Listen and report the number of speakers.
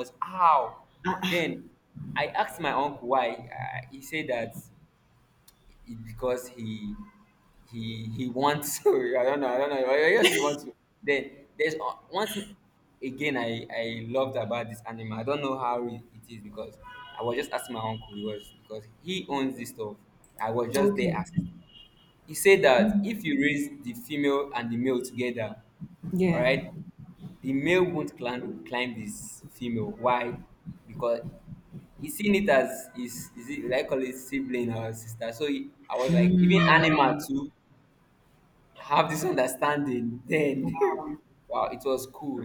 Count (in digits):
2